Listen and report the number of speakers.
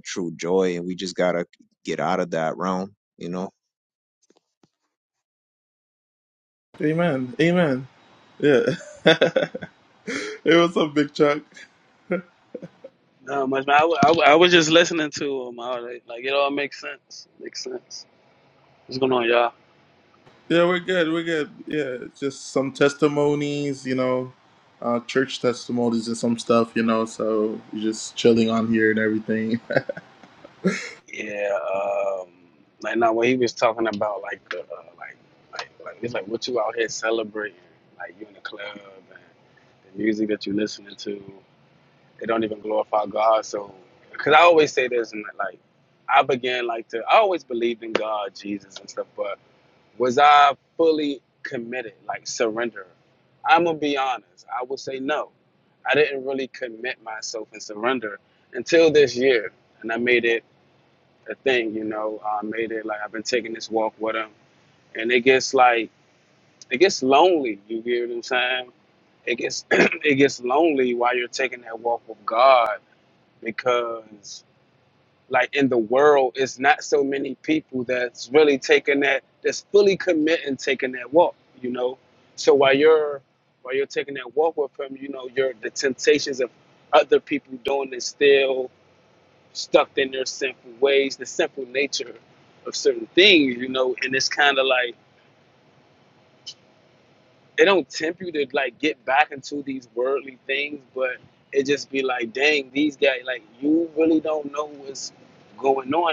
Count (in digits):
3